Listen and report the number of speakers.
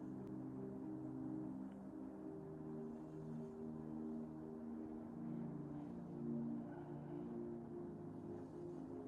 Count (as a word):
zero